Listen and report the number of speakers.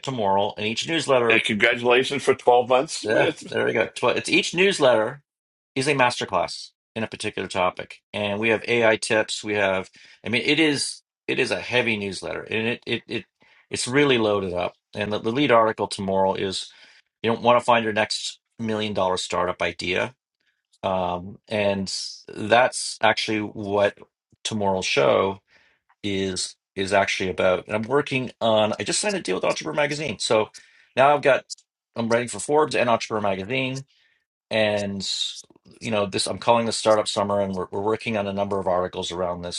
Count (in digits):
2